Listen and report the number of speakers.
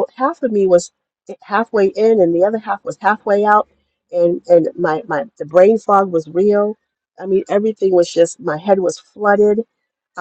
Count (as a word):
one